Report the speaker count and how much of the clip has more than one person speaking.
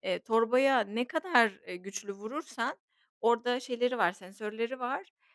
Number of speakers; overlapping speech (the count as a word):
one, no overlap